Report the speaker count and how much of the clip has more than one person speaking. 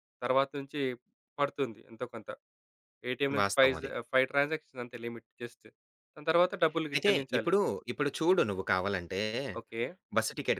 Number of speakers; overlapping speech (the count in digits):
2, about 11%